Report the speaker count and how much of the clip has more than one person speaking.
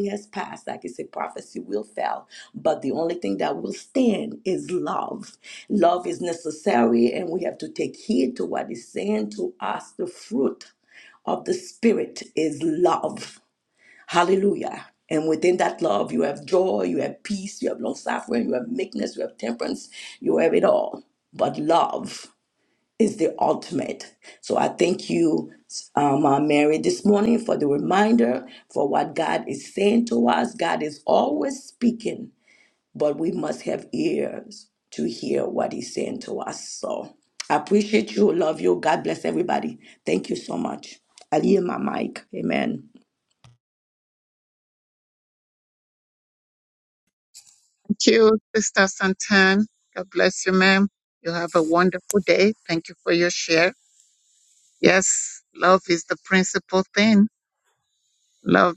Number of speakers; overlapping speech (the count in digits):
2, no overlap